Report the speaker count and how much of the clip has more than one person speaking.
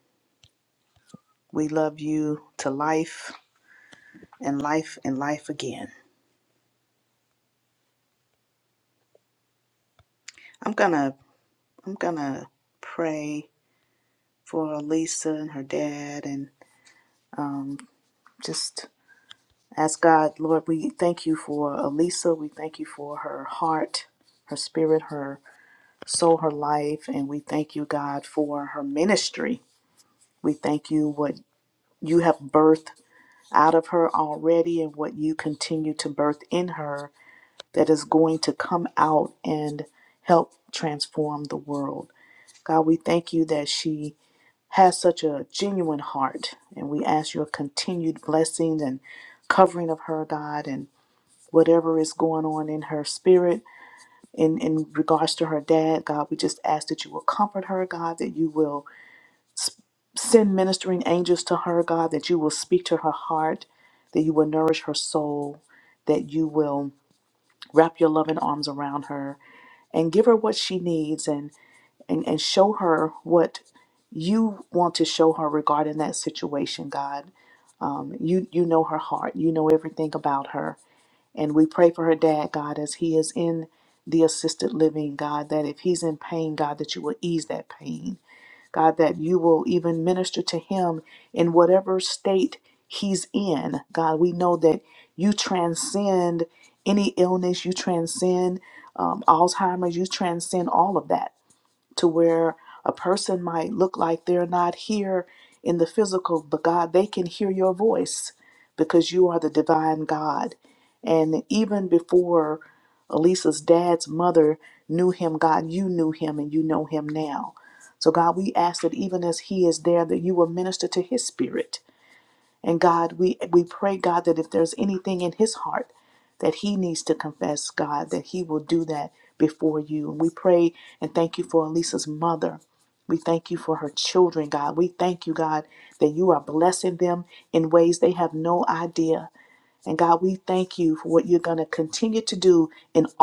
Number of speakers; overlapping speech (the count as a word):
one, no overlap